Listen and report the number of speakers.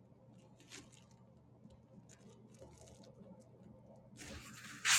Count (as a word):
zero